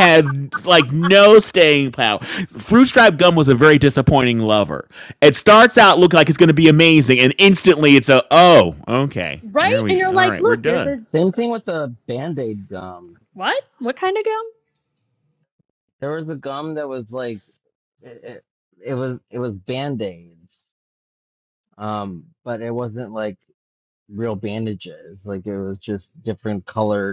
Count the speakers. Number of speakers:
three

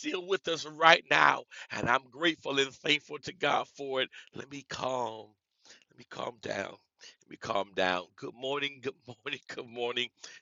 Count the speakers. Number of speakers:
one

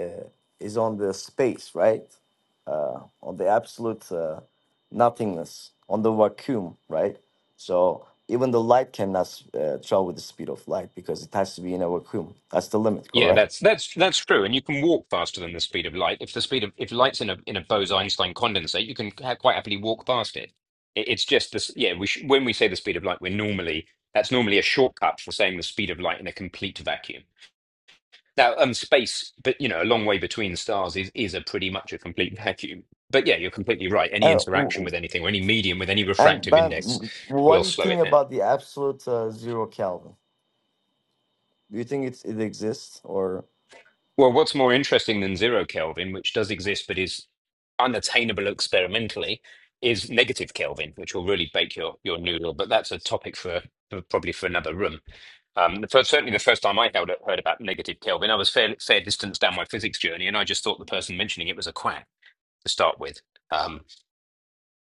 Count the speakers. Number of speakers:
two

